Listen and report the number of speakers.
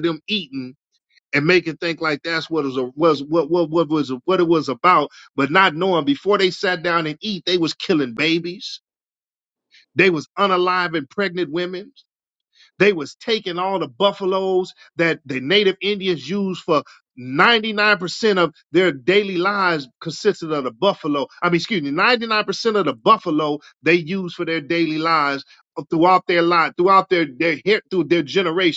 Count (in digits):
1